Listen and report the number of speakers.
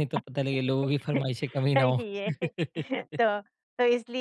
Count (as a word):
two